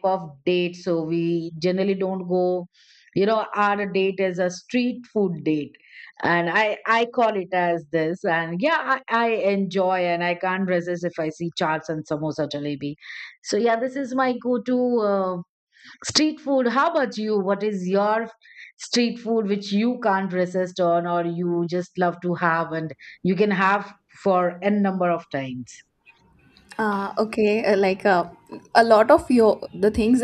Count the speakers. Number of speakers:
2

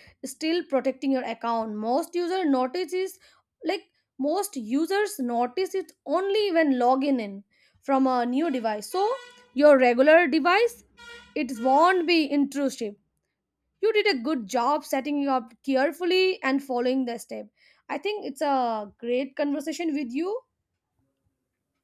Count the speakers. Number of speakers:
1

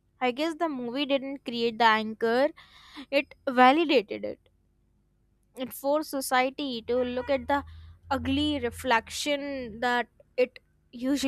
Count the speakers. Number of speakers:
1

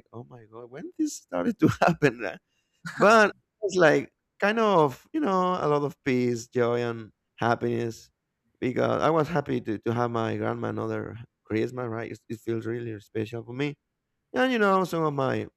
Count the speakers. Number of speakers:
1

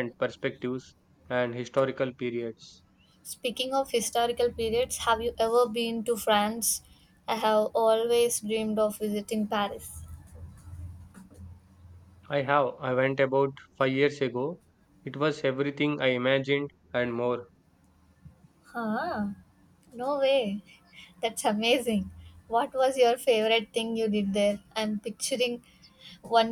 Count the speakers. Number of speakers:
2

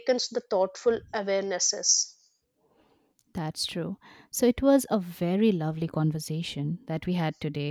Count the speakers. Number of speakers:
2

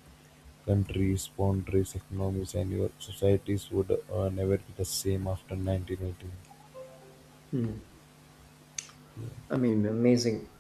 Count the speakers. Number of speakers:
2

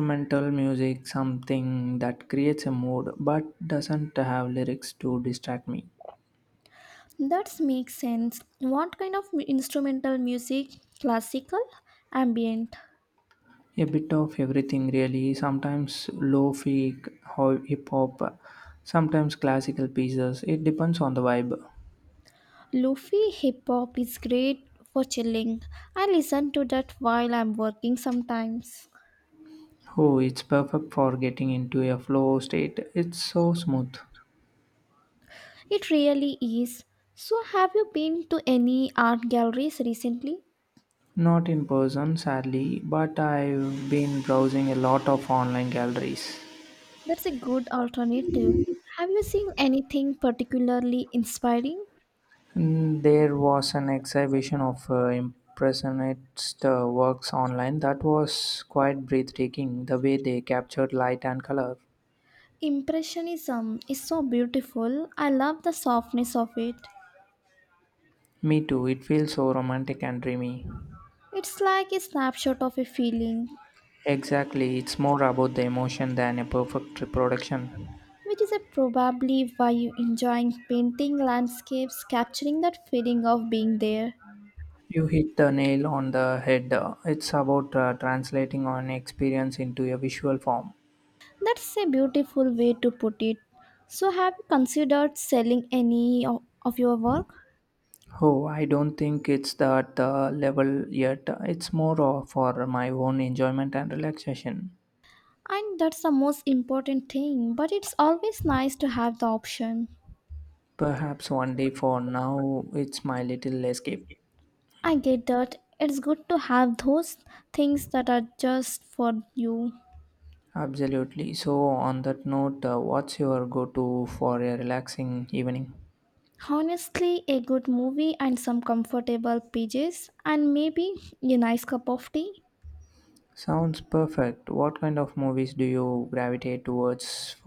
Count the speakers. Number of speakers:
2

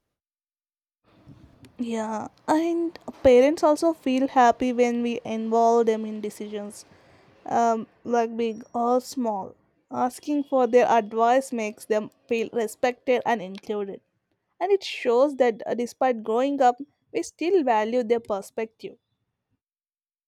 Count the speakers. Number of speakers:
1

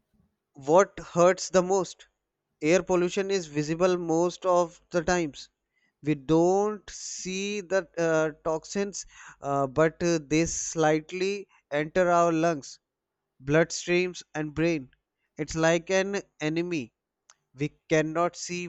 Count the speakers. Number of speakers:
1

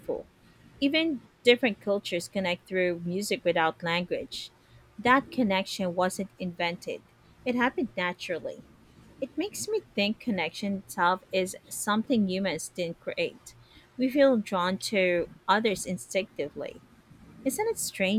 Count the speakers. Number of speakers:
1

